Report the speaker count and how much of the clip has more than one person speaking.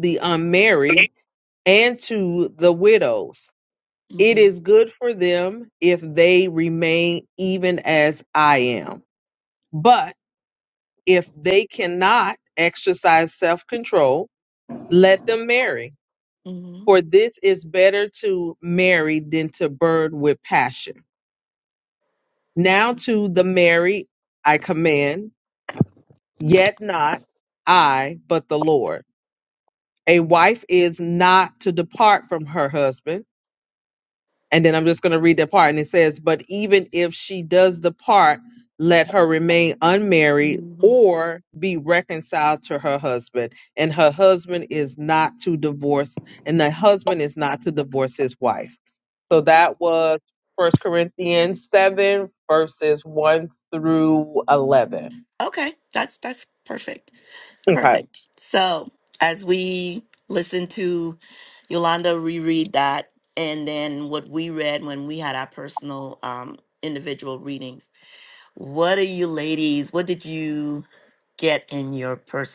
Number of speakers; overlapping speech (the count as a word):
two, about 2%